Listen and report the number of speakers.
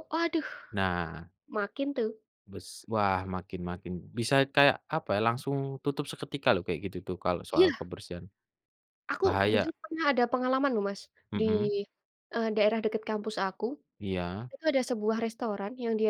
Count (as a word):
two